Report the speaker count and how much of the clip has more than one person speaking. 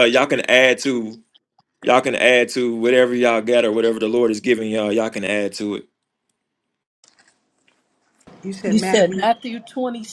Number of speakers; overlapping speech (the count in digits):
2, no overlap